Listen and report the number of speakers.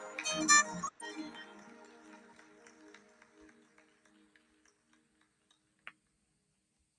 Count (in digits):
0